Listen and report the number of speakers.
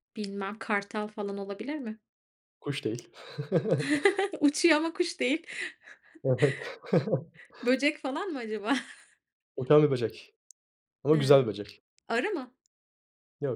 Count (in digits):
2